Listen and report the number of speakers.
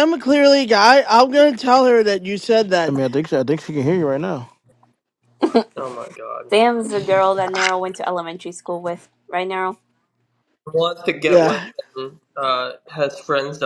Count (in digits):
4